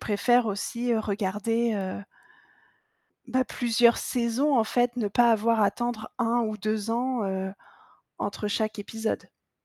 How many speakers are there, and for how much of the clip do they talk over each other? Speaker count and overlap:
one, no overlap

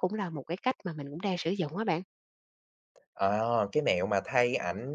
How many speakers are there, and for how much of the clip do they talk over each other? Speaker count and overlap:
two, no overlap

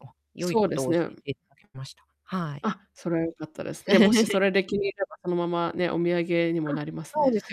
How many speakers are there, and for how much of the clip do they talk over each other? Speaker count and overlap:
two, about 11%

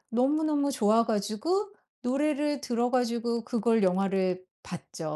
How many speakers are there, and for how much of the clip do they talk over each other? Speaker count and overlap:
one, no overlap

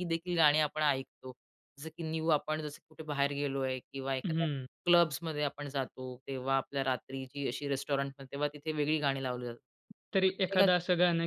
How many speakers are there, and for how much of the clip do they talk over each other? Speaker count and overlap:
two, about 6%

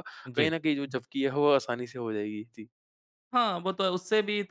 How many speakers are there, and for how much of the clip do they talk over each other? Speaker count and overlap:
two, about 3%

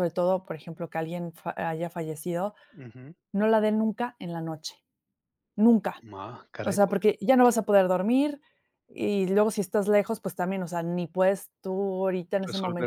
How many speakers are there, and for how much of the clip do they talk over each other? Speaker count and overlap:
two, about 6%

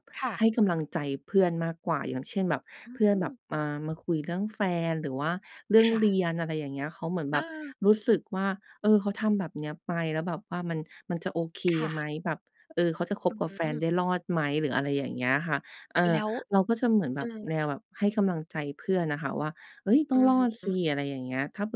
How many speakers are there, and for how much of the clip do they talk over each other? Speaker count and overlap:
two, about 10%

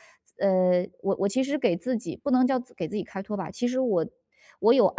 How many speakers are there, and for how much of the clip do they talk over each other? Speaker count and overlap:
one, no overlap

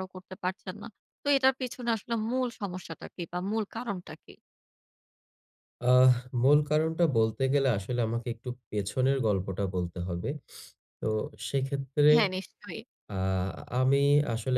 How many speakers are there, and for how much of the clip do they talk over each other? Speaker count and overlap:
two, about 1%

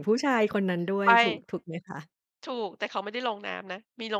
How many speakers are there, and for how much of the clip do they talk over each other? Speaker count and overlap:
two, about 3%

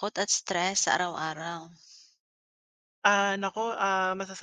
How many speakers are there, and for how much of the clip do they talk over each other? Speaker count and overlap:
two, no overlap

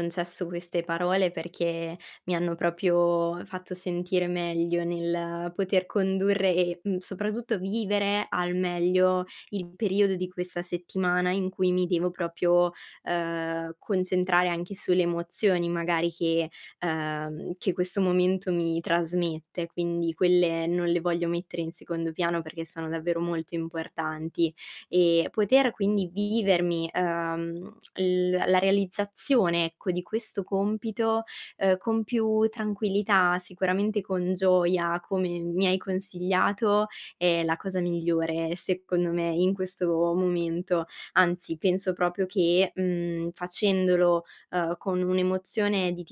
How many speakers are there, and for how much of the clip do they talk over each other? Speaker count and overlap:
one, no overlap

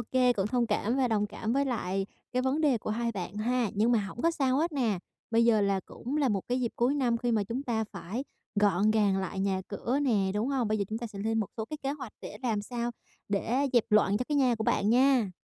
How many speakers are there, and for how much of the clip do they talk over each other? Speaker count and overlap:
one, no overlap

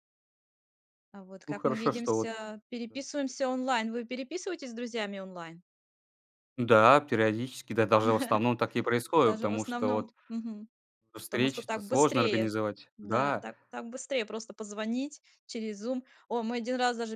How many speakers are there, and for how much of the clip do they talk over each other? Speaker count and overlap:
two, about 19%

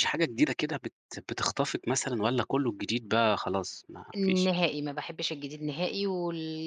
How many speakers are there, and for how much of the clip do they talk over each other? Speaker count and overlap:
two, about 5%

